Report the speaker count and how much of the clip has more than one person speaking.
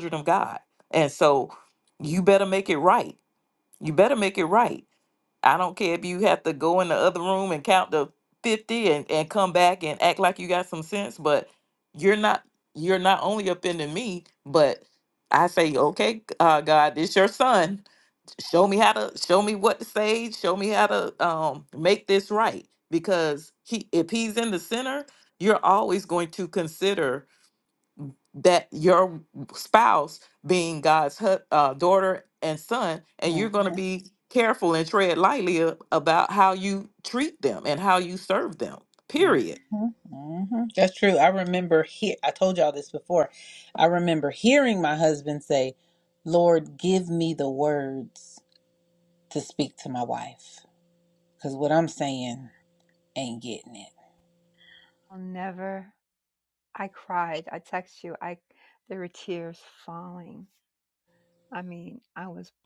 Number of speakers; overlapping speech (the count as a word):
three, about 1%